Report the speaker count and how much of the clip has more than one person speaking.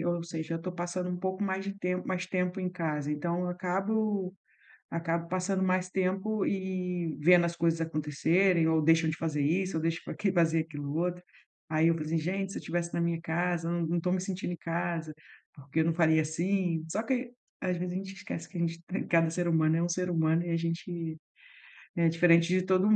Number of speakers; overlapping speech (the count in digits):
1, no overlap